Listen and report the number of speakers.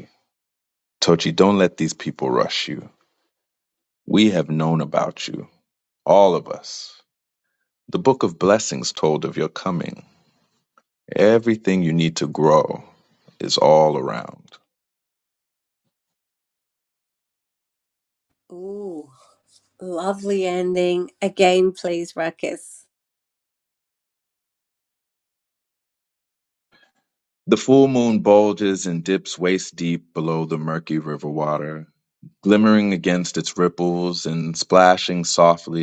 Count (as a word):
two